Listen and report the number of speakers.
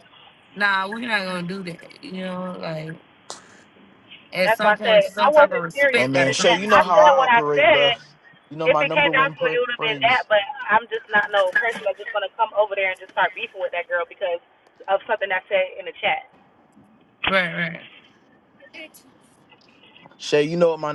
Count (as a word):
three